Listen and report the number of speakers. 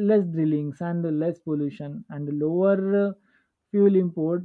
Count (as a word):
one